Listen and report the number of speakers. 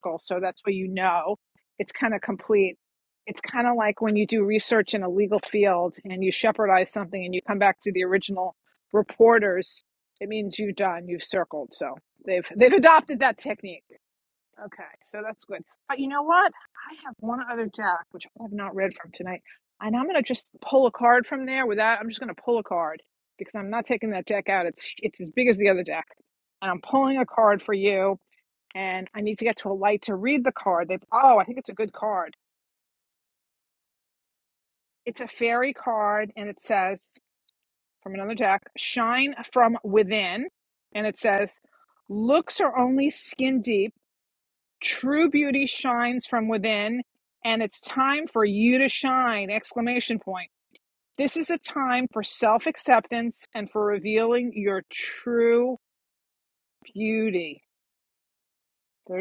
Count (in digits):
1